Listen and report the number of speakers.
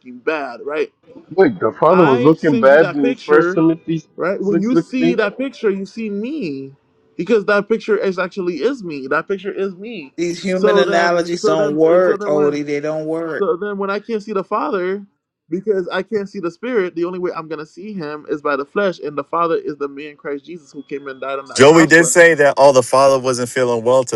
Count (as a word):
four